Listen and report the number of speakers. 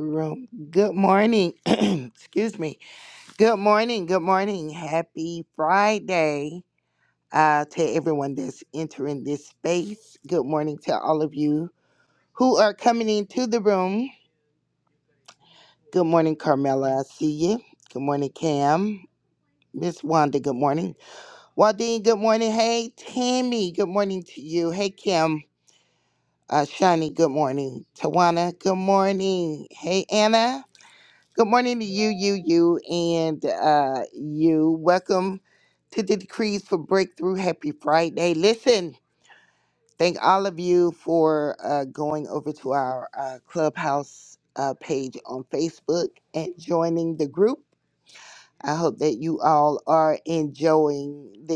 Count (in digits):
1